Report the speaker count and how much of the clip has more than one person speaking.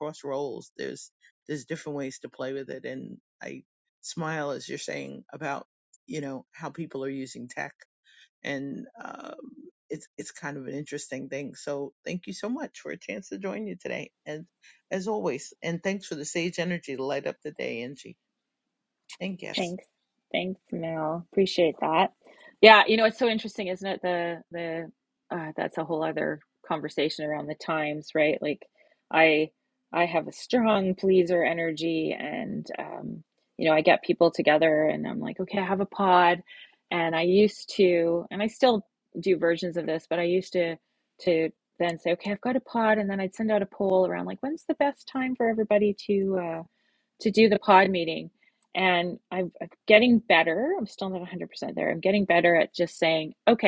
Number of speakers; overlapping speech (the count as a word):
two, under 1%